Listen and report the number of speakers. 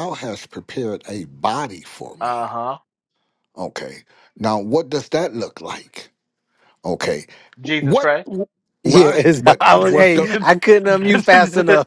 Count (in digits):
3